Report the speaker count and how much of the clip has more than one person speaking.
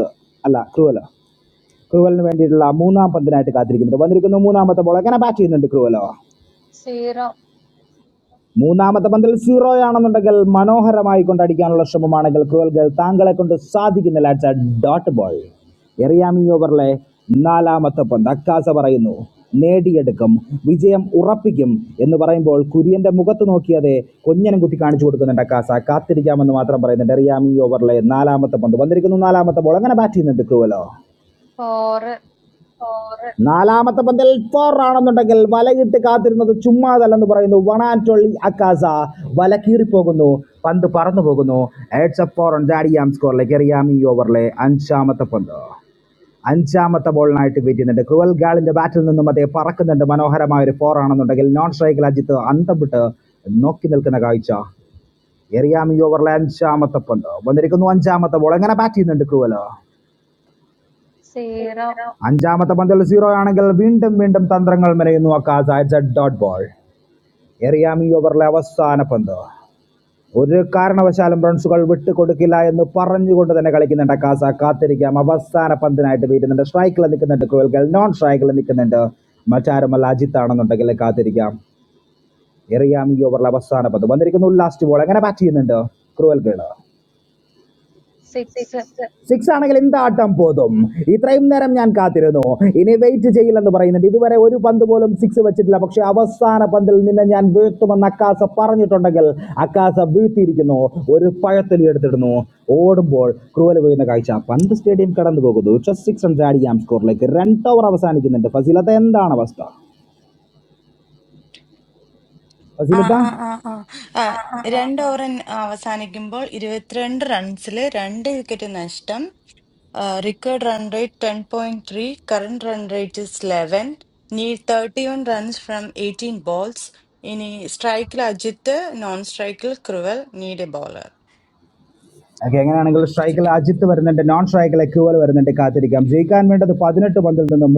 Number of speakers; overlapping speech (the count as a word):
three, about 1%